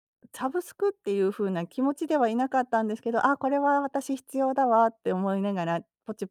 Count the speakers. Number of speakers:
1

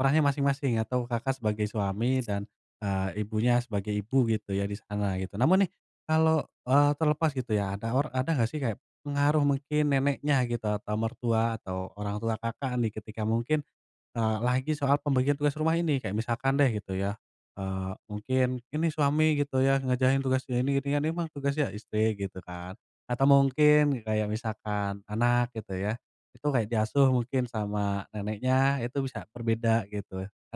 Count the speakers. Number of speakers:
1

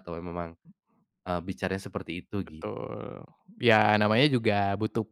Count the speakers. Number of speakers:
2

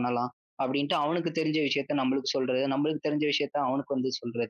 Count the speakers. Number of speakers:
1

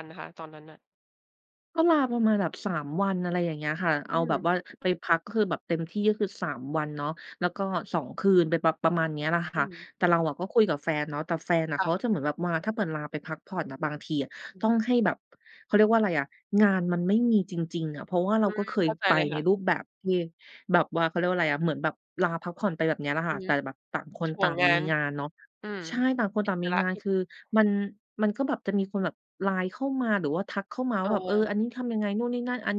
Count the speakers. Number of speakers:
2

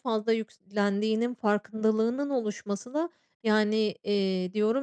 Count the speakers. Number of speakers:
1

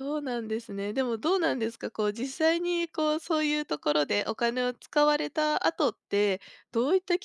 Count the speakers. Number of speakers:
1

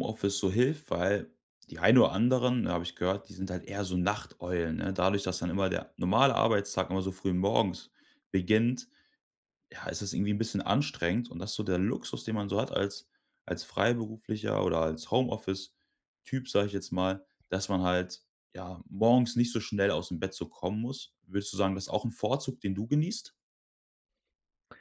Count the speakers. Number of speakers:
1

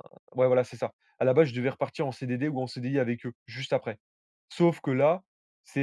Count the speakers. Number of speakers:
1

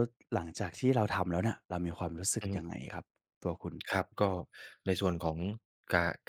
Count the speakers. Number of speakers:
2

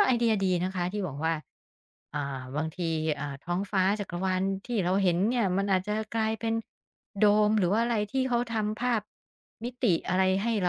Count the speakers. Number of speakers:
1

